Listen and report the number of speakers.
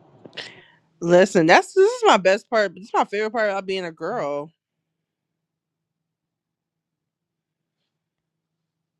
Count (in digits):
1